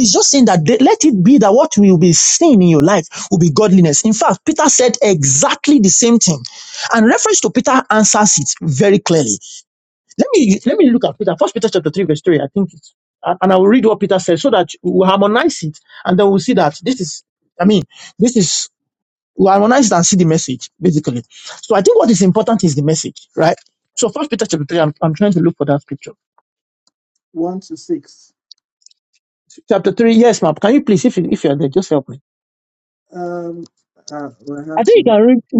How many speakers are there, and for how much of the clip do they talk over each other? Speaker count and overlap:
two, about 1%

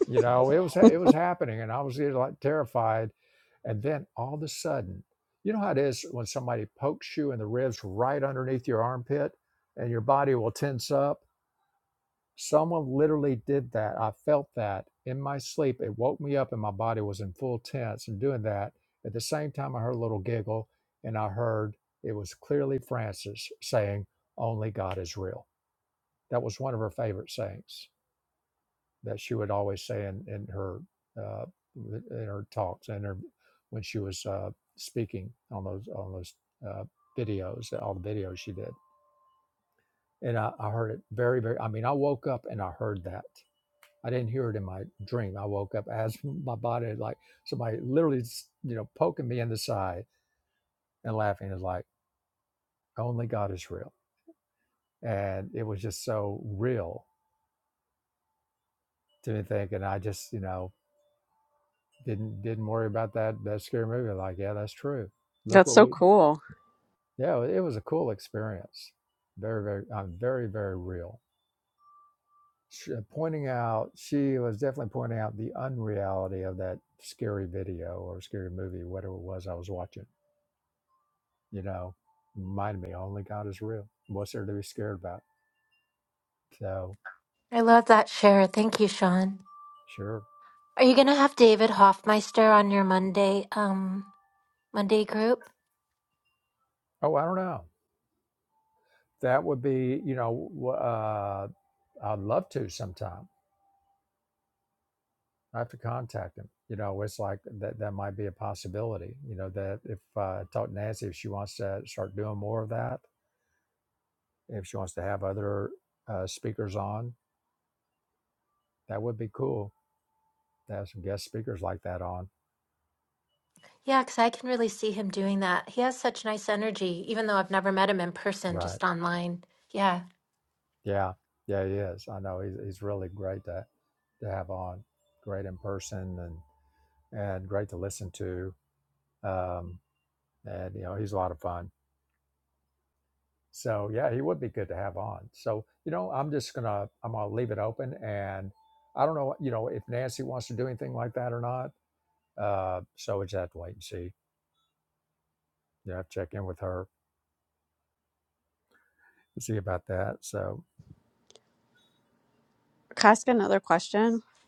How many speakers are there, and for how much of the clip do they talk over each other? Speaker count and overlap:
three, under 1%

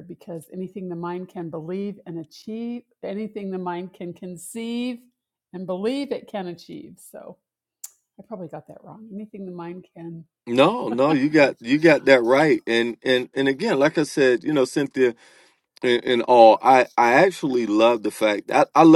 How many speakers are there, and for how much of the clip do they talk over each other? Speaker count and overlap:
two, no overlap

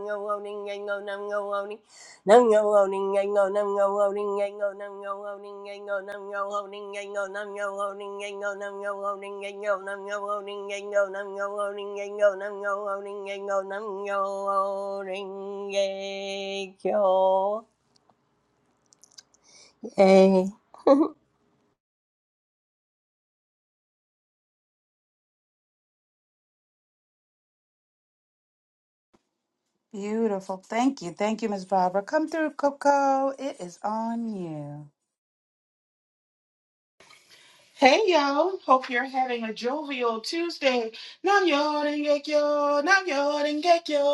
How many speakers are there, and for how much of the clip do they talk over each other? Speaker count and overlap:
three, no overlap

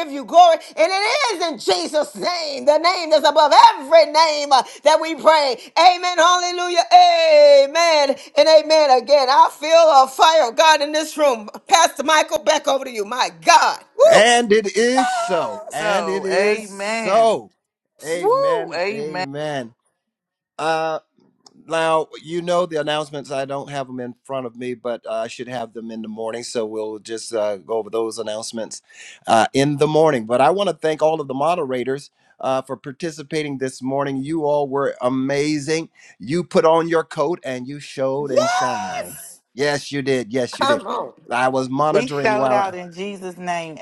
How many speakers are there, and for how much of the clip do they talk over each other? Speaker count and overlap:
three, about 9%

